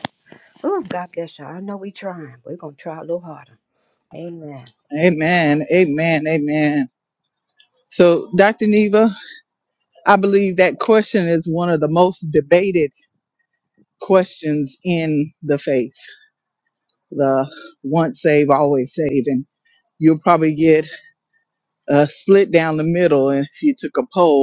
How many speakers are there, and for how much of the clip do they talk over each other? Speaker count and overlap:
2, no overlap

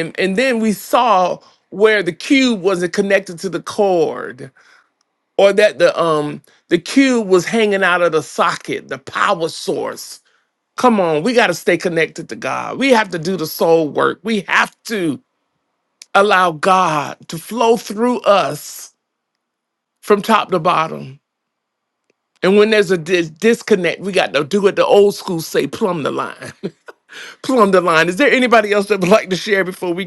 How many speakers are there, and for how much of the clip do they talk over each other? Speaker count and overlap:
1, no overlap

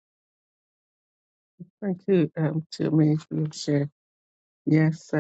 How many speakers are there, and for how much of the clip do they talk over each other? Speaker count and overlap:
1, no overlap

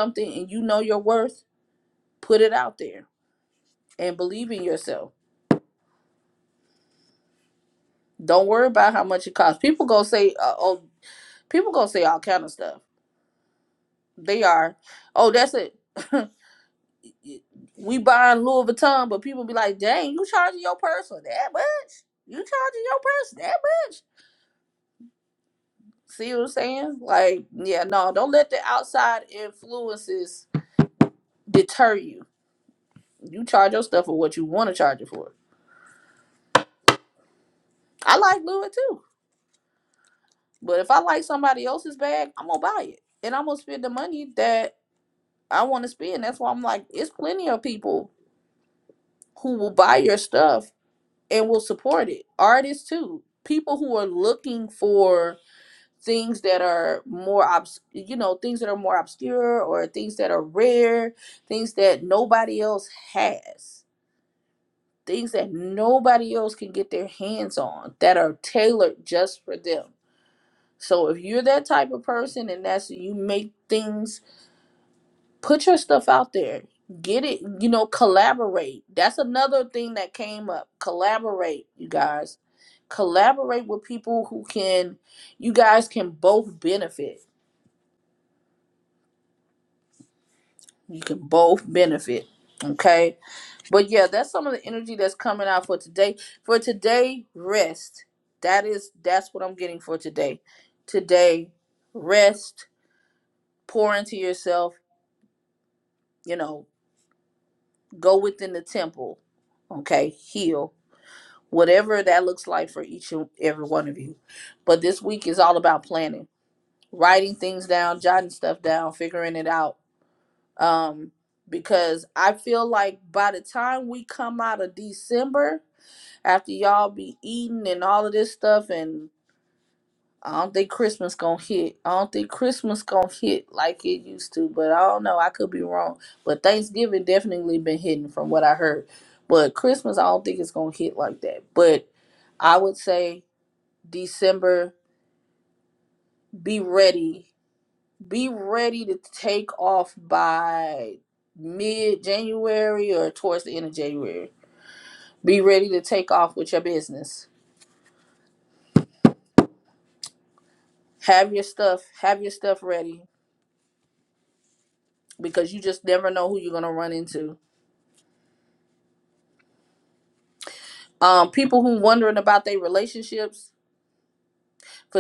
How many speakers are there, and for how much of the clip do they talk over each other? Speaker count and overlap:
1, no overlap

